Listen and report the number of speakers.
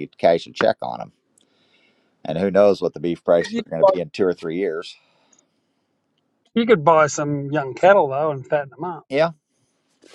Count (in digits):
2